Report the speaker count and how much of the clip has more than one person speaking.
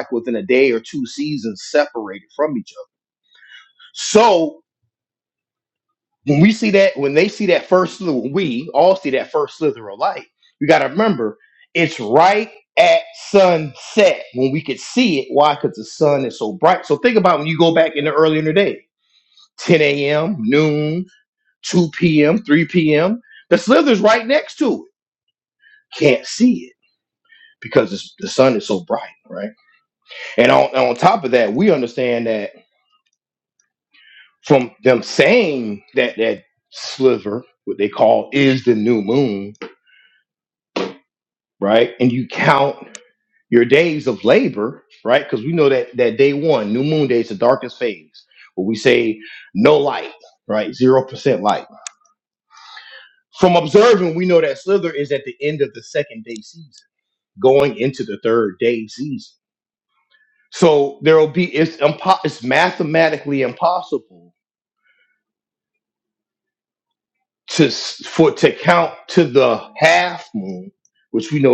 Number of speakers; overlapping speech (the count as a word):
one, no overlap